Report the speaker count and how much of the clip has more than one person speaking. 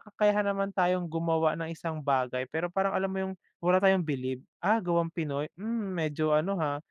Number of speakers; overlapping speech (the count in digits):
1, no overlap